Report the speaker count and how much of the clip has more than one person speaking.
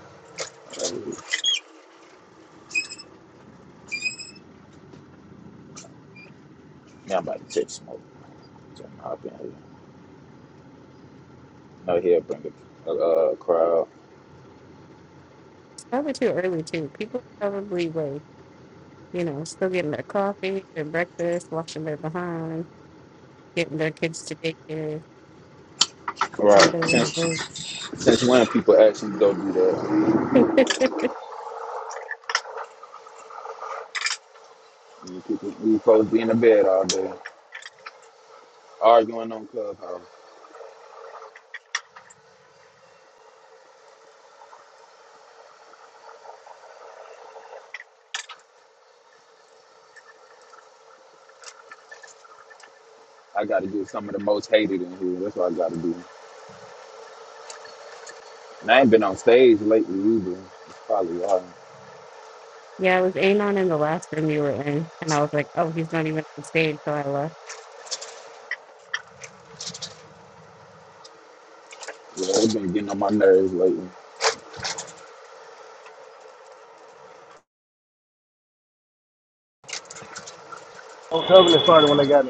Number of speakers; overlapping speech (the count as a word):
three, about 1%